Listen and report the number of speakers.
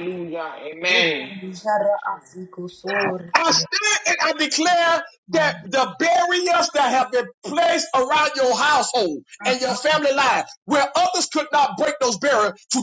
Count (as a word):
three